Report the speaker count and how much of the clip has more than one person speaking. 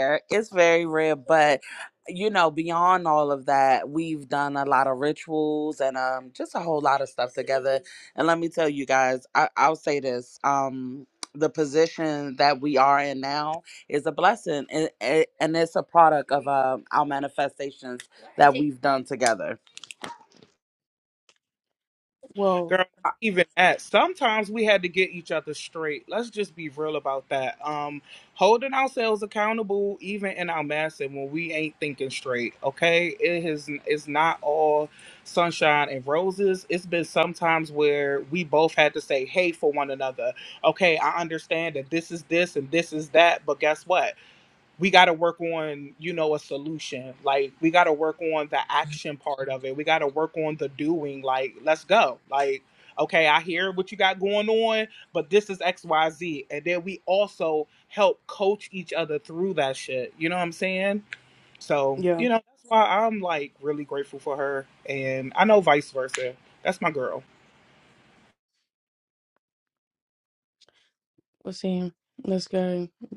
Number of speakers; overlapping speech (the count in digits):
3, under 1%